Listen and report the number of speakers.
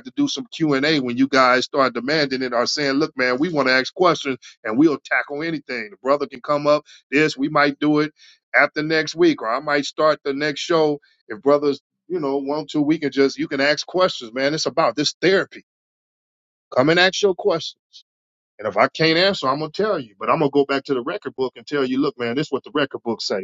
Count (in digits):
1